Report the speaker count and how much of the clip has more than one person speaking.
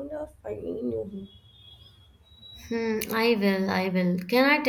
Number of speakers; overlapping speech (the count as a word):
two, no overlap